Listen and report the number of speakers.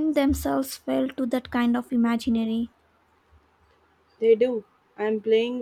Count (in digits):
2